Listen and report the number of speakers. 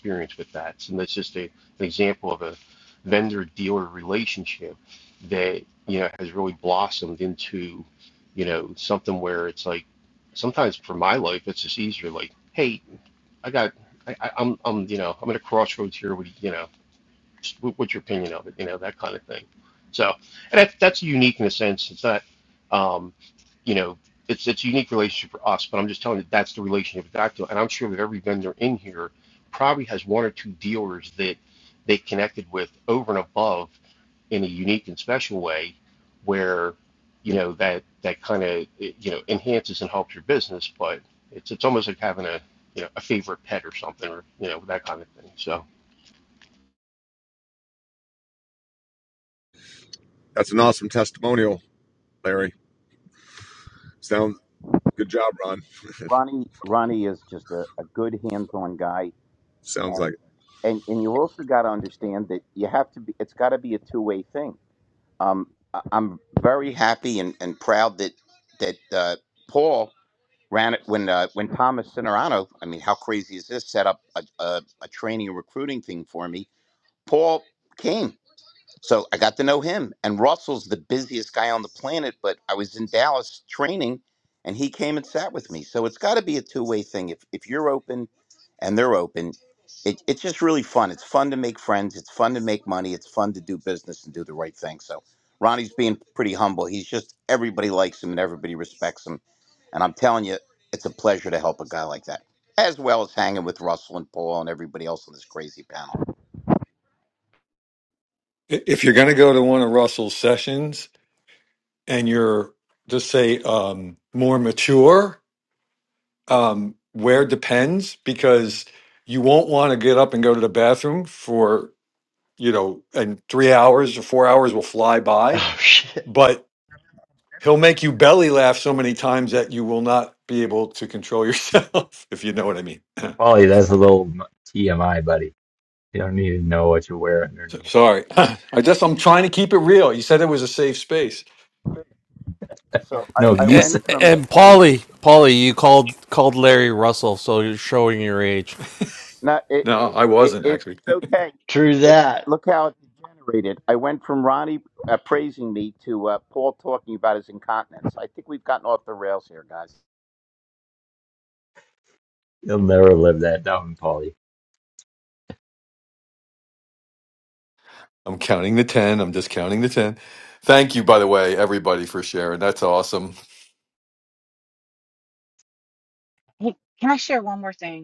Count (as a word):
eight